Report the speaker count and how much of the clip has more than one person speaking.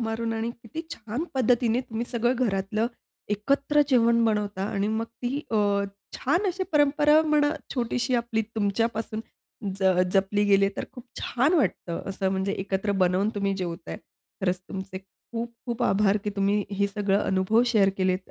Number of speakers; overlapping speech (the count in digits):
1, no overlap